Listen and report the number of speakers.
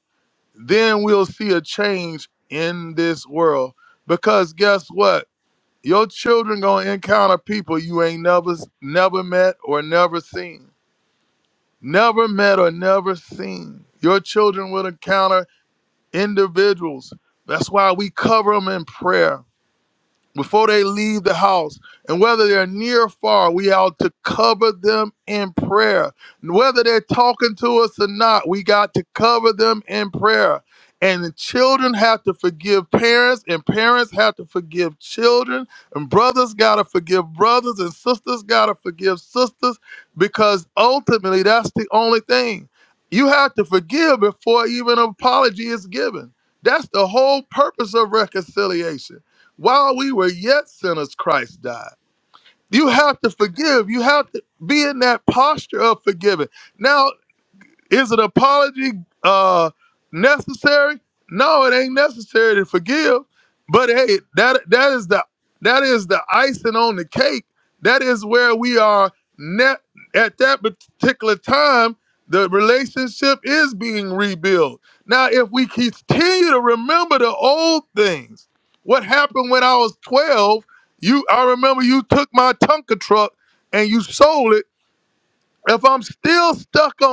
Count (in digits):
1